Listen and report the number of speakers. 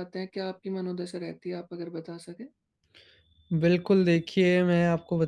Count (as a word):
two